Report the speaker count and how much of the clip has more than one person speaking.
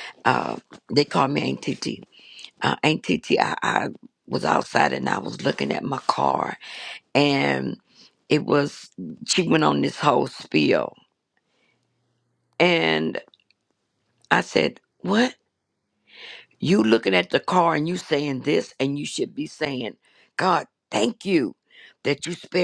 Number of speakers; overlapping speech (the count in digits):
1, no overlap